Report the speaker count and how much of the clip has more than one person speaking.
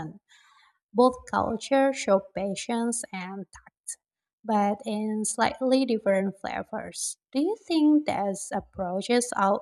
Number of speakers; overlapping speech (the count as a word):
one, no overlap